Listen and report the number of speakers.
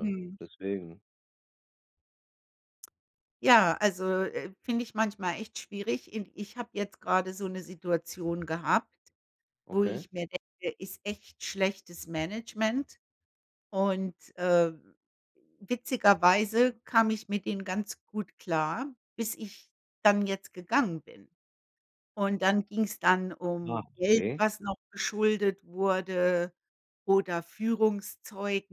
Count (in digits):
2